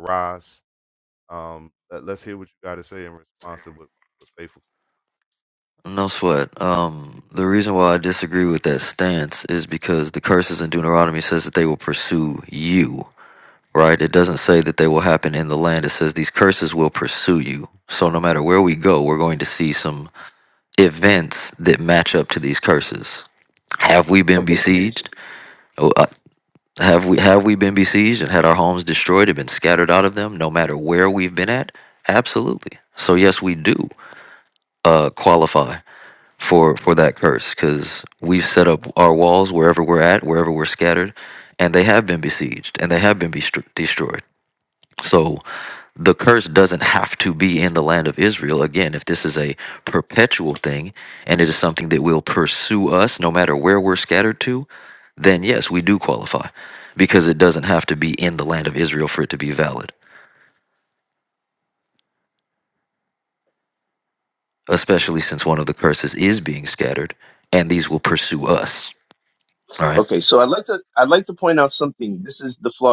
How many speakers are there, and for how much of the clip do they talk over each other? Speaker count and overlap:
3, under 1%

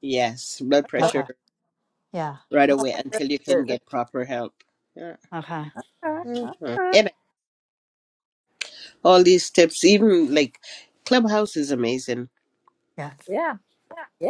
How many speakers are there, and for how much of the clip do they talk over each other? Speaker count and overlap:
3, about 9%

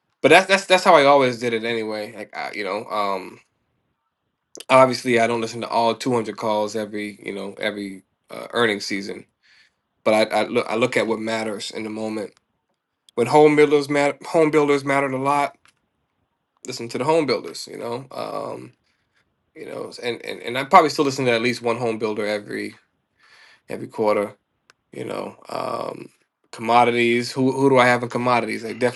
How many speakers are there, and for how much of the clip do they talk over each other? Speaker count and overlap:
1, no overlap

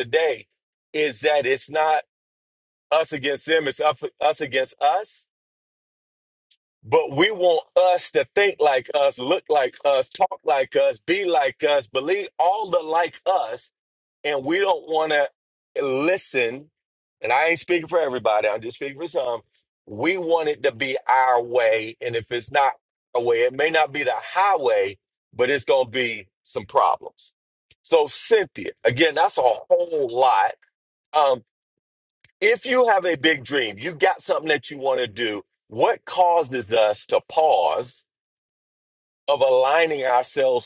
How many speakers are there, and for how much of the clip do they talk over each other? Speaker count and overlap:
1, no overlap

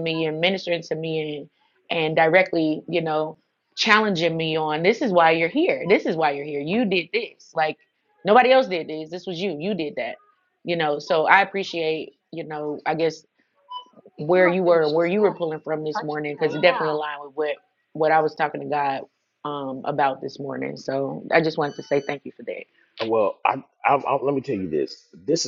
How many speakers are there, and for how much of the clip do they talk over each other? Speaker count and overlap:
2, no overlap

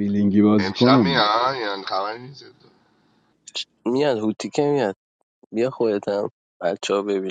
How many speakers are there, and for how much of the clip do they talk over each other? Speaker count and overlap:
3, about 9%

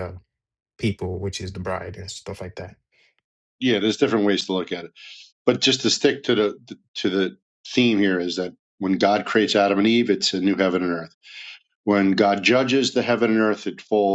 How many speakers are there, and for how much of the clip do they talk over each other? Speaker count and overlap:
2, no overlap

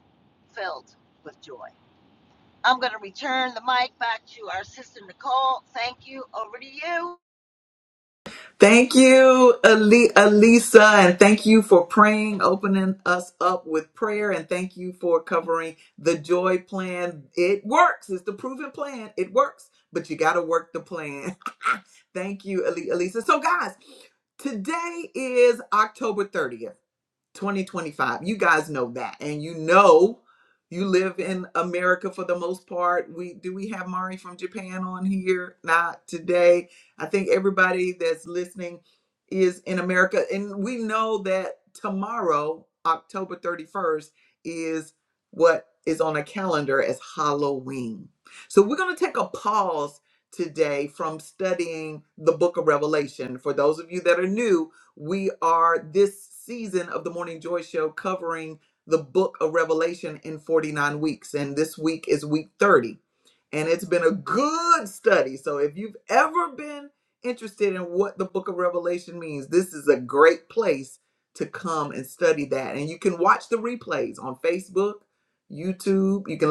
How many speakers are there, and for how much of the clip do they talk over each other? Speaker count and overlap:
2, no overlap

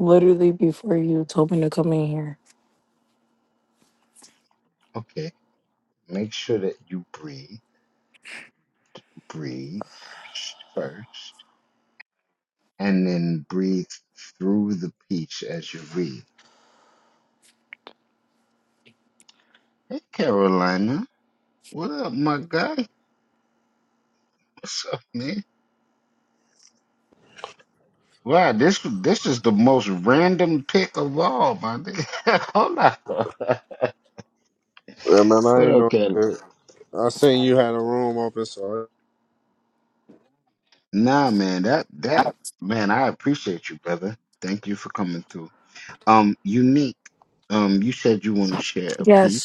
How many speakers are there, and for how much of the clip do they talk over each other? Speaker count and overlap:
3, about 2%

